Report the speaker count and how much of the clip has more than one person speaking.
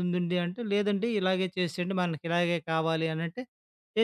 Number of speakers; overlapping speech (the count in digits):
1, no overlap